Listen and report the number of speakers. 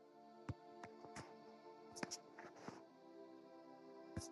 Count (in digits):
0